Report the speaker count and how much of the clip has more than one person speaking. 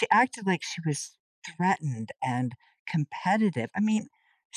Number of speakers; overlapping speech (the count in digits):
1, no overlap